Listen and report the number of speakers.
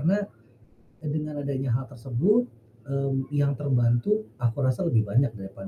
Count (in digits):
1